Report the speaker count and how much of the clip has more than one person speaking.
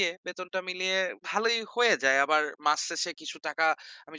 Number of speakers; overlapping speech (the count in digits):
1, no overlap